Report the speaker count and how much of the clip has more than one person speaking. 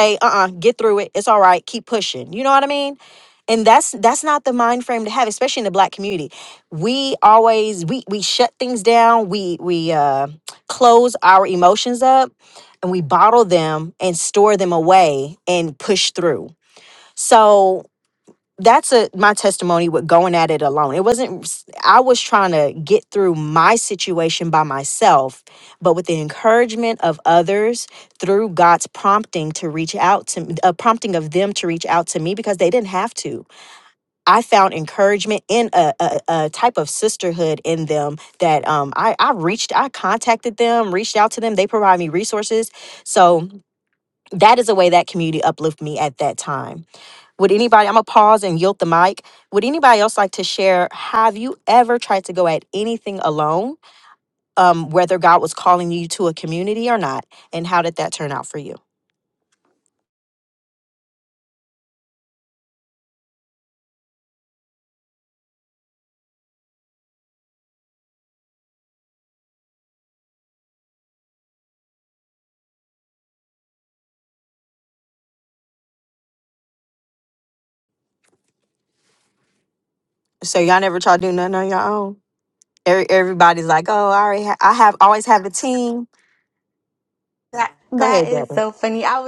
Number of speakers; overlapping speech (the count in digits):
2, about 1%